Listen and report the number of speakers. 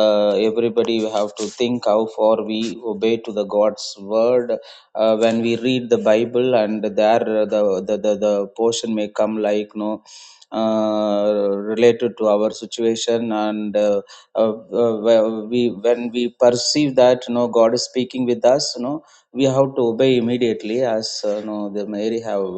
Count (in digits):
1